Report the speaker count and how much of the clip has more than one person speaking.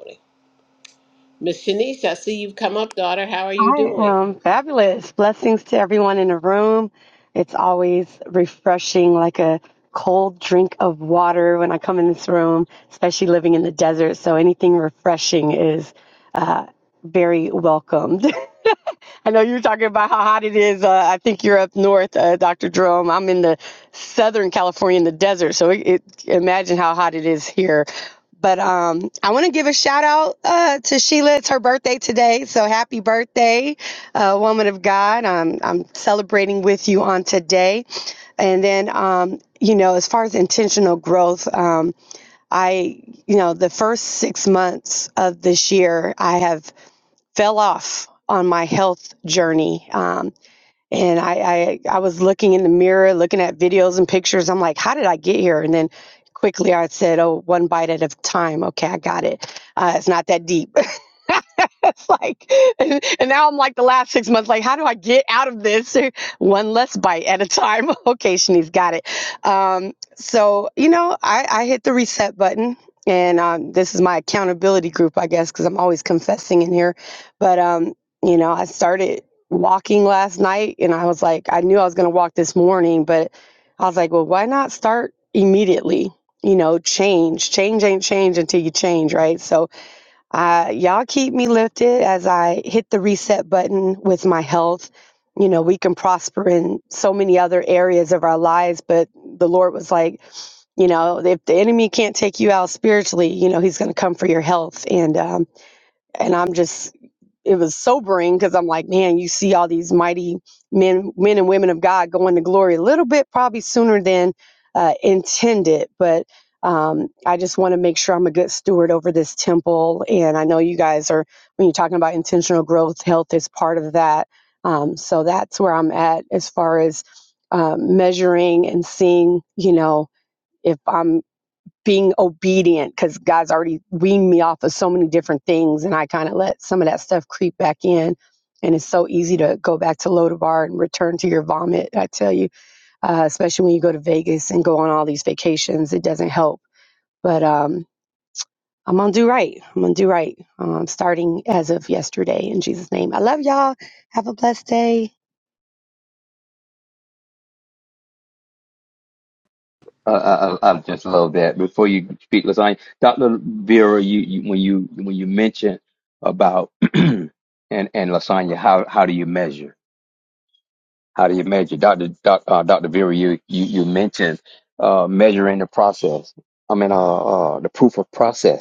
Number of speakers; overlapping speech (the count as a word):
three, under 1%